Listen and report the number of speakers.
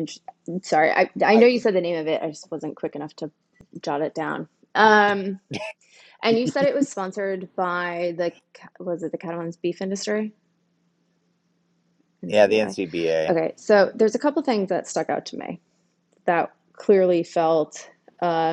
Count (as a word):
two